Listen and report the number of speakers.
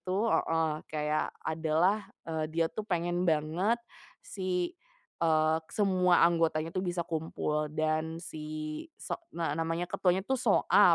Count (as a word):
one